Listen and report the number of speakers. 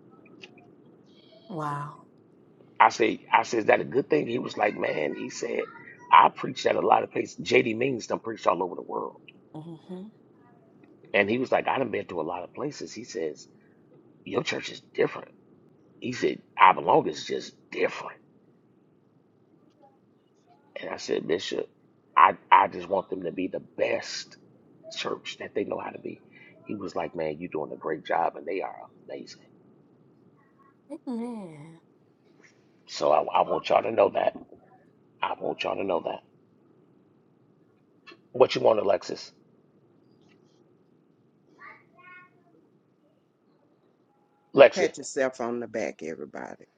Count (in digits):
3